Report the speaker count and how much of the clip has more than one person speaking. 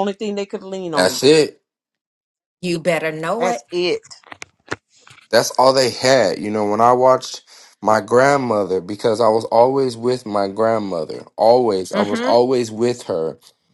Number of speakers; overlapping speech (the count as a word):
three, about 7%